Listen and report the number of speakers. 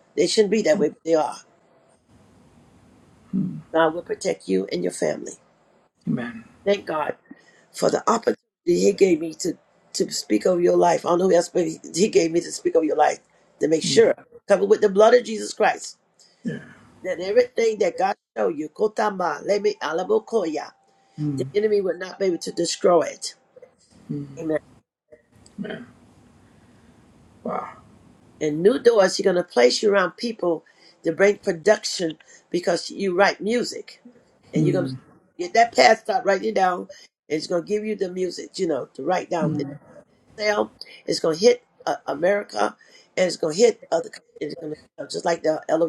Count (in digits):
2